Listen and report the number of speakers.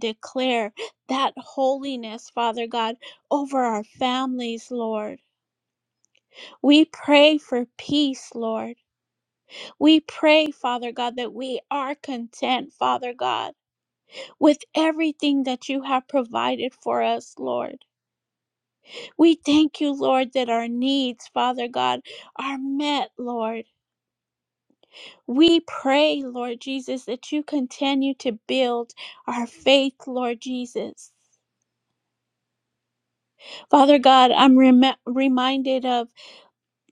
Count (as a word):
one